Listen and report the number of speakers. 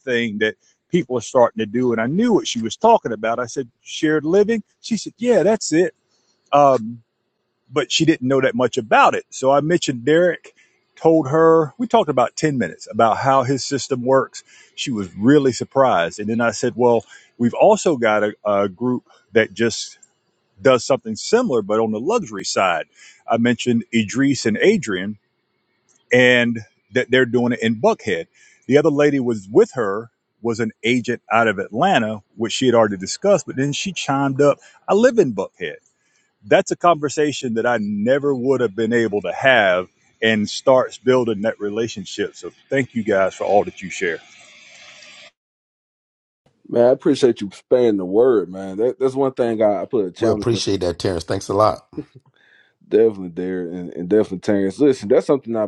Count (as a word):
three